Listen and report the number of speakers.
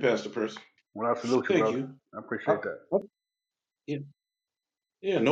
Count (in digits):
2